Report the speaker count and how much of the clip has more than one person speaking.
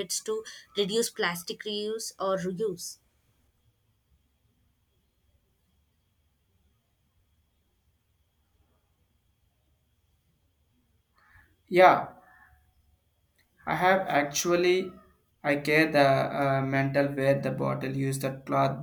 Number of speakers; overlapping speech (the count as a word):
two, no overlap